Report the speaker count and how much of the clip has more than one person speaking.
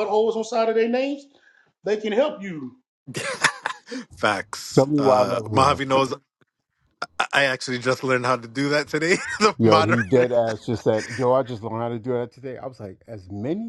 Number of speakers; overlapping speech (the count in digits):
3, about 11%